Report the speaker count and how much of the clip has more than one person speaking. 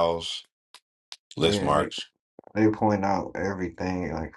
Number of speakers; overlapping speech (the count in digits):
2, about 12%